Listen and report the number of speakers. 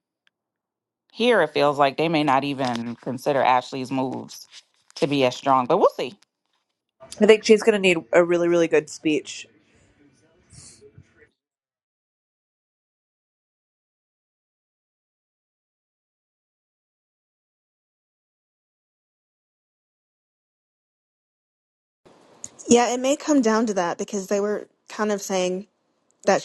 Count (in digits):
3